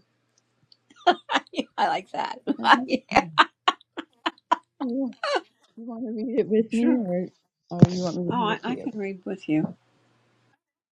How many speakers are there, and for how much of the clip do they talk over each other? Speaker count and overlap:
two, about 8%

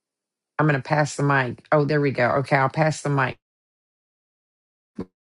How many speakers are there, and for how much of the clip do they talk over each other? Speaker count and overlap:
one, no overlap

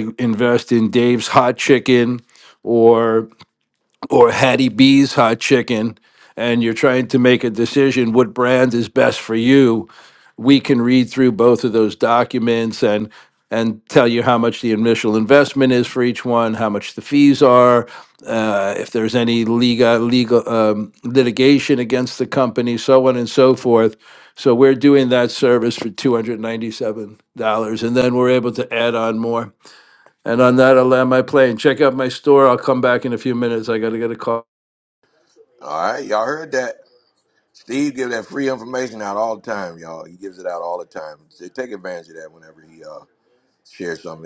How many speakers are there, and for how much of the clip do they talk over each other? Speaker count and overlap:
two, no overlap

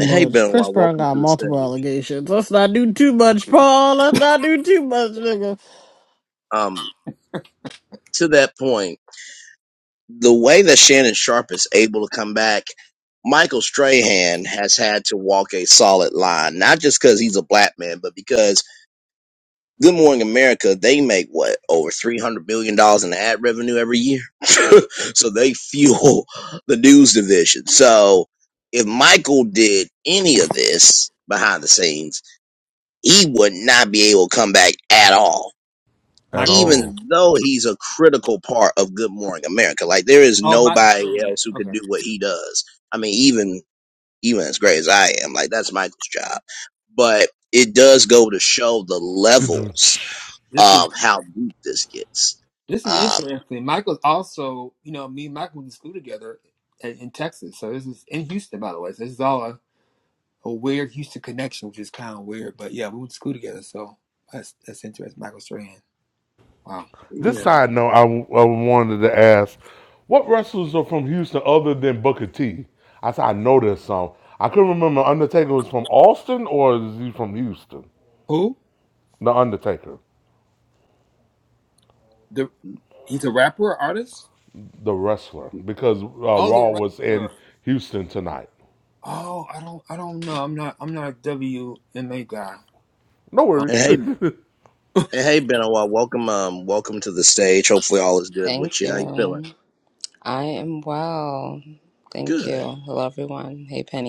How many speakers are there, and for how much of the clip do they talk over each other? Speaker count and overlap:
five, about 7%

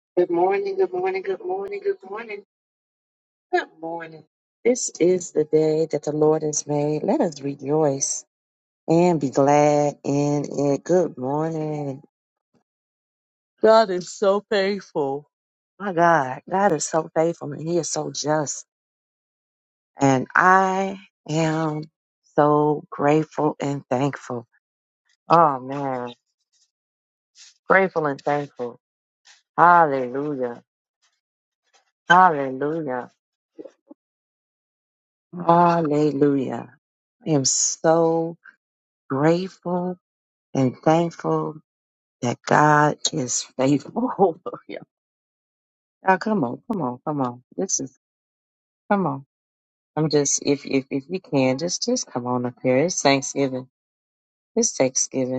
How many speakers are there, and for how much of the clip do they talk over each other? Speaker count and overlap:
one, no overlap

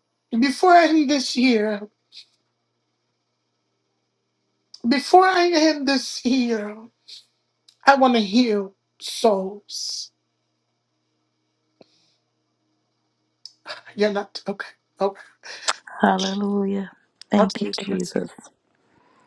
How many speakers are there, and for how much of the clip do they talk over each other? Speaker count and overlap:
two, about 5%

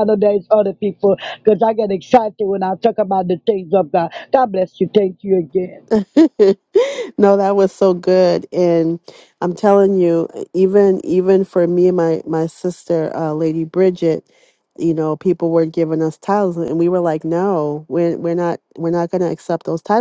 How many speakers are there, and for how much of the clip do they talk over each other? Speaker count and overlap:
two, no overlap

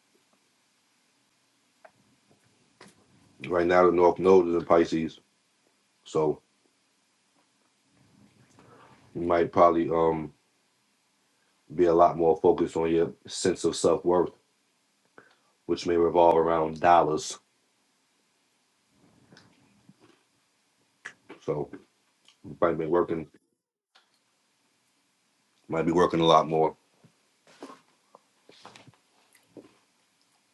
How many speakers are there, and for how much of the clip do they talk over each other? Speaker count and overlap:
one, no overlap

